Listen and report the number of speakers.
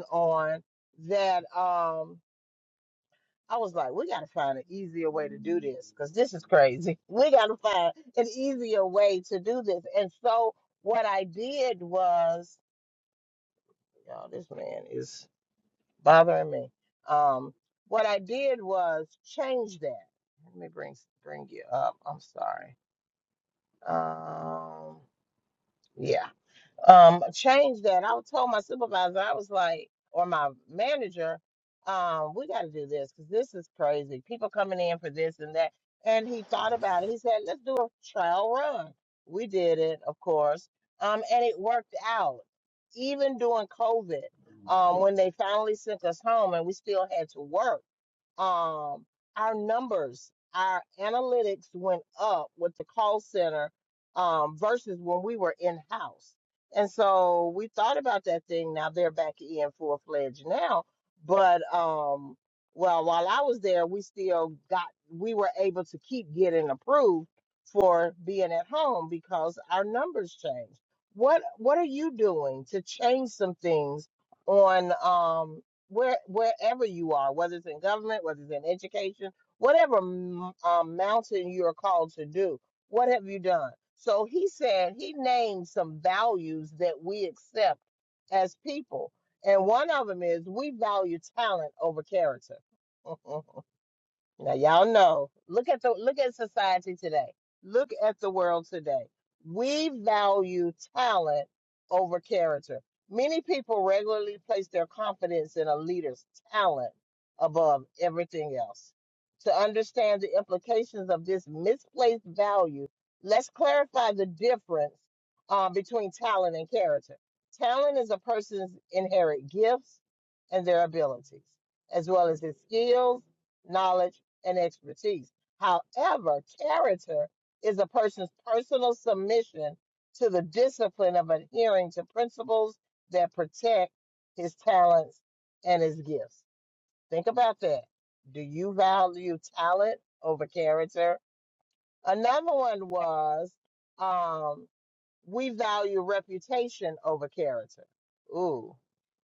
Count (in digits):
1